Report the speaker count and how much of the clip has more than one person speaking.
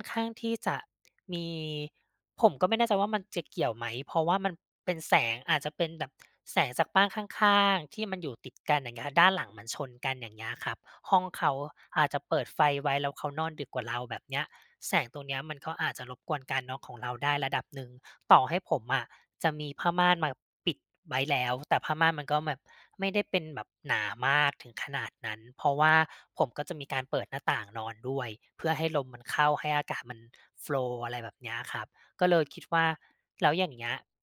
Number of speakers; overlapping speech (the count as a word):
one, no overlap